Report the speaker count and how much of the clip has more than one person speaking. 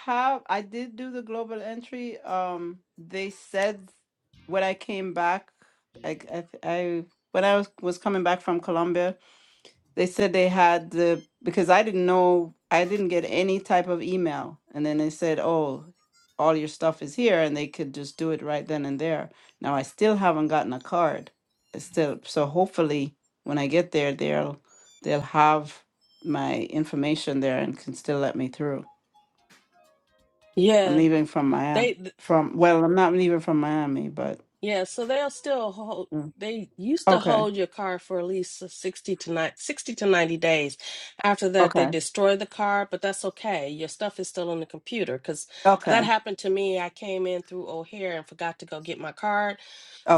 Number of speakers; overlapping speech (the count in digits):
2, about 3%